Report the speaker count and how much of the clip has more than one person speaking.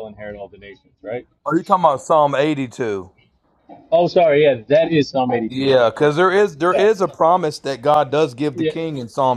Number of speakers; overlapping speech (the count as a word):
two, about 12%